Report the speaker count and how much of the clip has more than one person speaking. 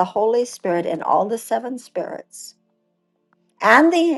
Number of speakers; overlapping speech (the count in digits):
1, no overlap